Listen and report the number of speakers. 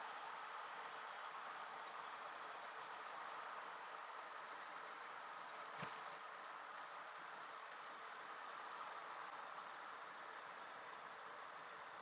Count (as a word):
zero